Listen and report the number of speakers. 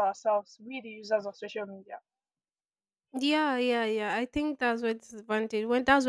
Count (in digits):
2